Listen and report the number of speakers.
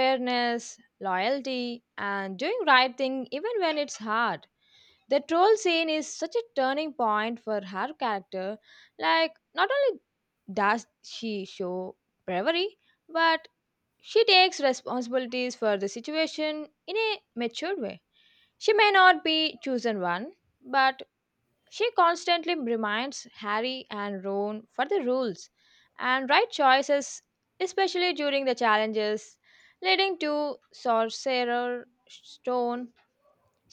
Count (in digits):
1